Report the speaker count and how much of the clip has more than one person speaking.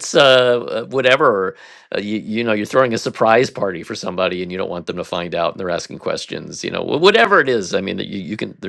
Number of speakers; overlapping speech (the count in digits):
1, no overlap